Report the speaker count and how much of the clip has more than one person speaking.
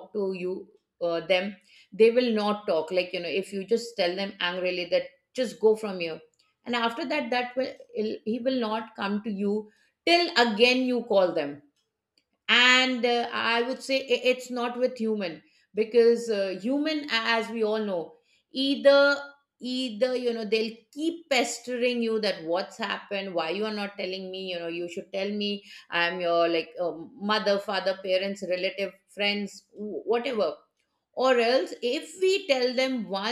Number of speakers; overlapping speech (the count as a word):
one, no overlap